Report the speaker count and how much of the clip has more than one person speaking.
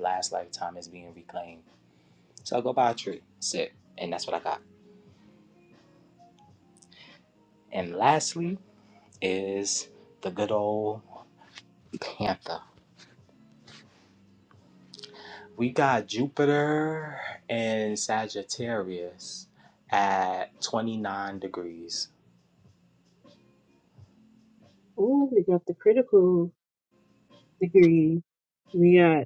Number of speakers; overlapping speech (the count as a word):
two, no overlap